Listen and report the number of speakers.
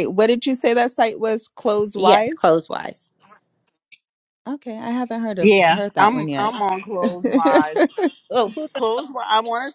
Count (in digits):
3